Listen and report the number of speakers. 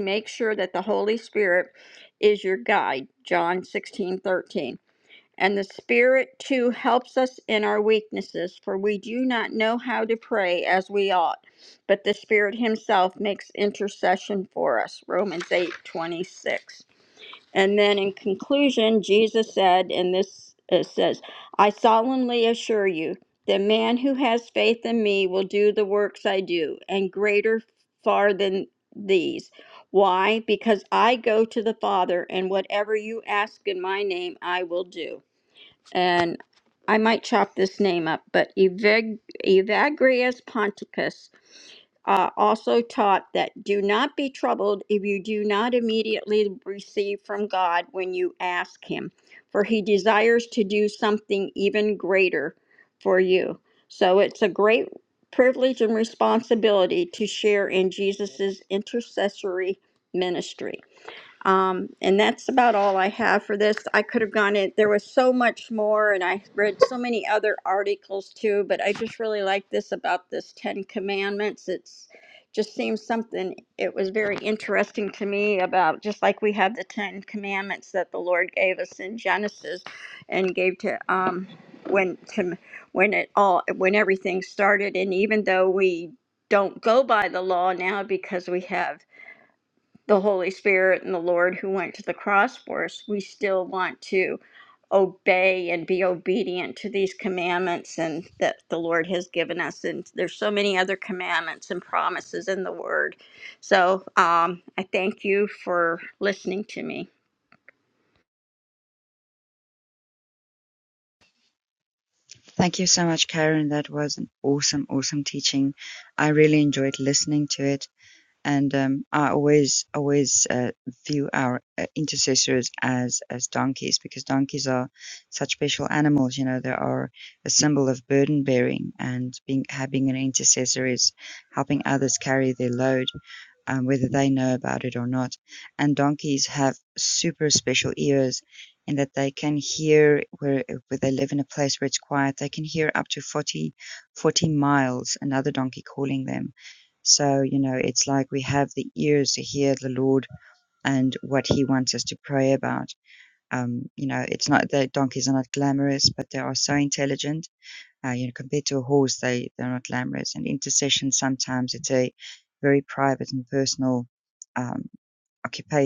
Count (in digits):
2